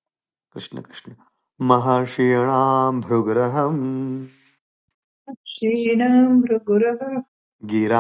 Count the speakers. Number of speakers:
2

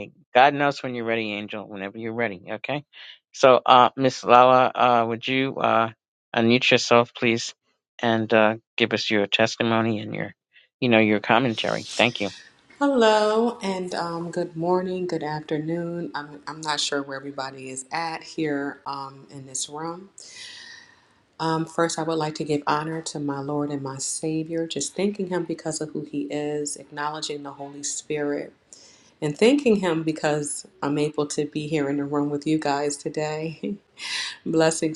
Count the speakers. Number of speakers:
2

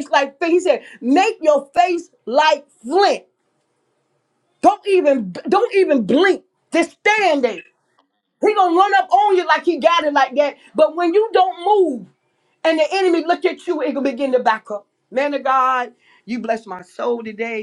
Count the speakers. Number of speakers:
1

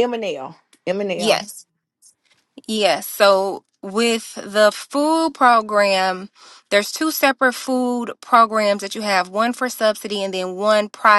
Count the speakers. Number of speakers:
2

